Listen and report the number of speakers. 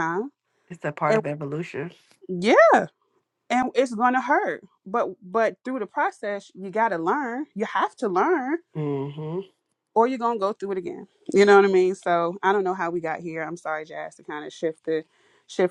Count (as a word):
two